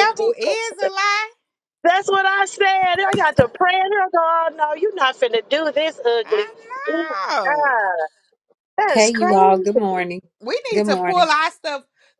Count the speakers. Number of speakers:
3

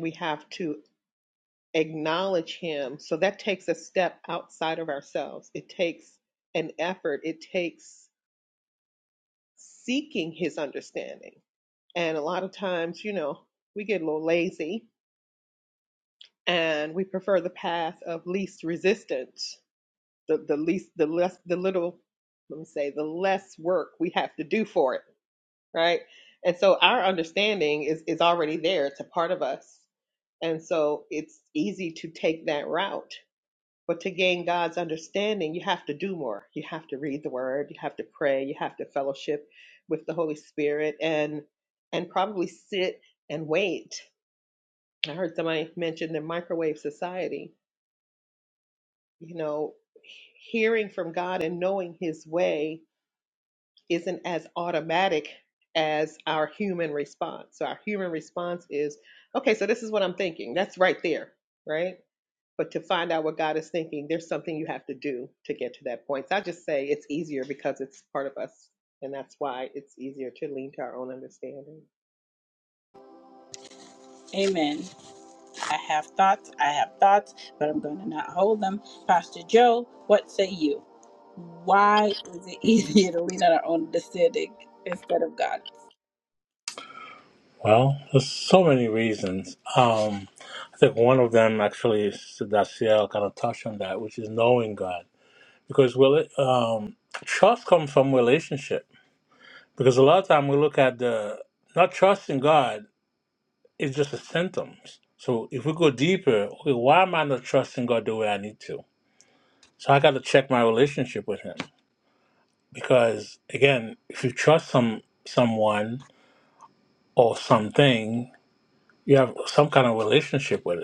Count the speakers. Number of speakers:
3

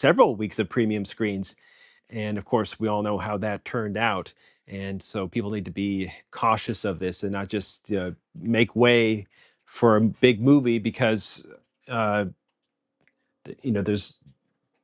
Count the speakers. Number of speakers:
1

